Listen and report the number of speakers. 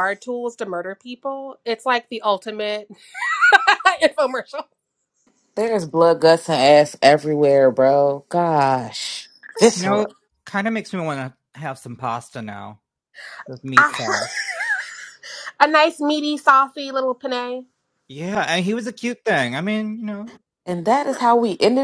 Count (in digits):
3